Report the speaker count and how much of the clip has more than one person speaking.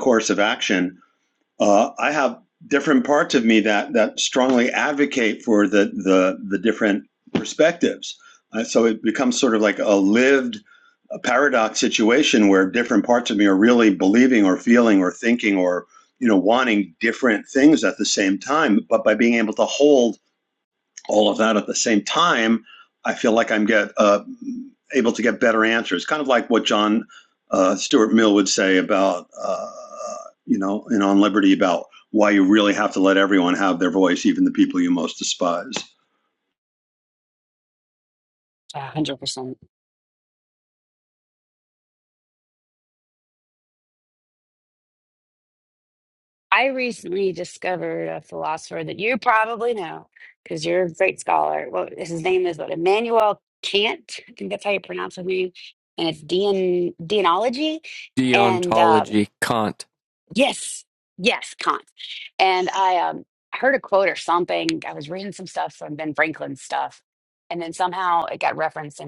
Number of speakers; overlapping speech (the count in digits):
3, about 1%